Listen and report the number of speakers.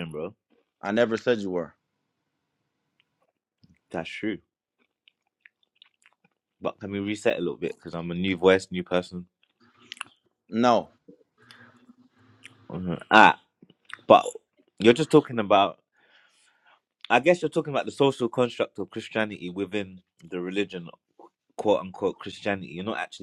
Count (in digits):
2